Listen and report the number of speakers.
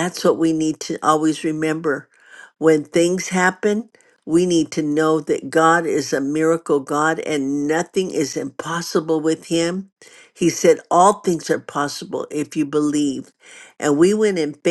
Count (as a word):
one